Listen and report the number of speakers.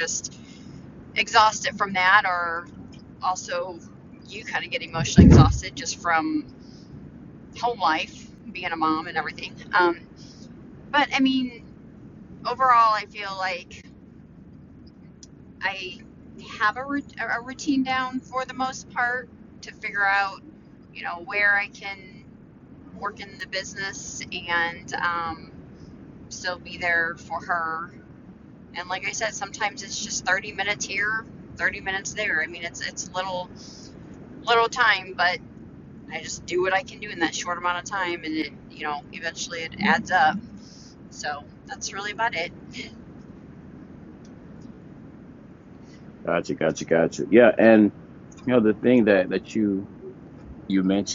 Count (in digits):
2